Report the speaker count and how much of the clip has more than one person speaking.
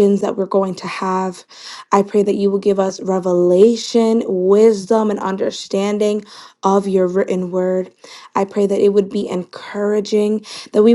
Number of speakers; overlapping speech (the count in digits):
1, no overlap